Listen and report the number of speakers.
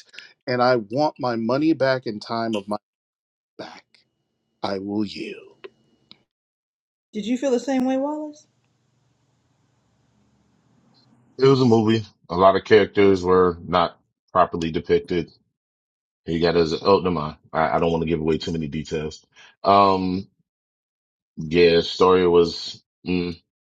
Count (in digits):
3